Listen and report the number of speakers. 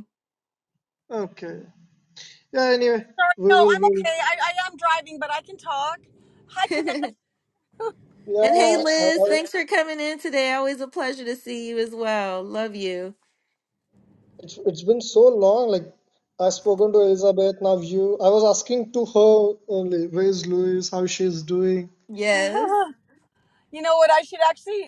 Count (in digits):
3